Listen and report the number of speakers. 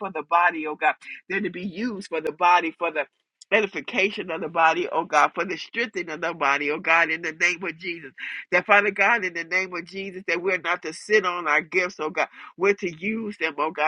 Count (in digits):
1